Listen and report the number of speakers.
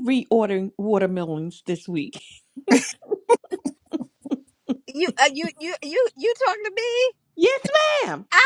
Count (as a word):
two